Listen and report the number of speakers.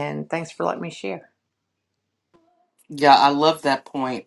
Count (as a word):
two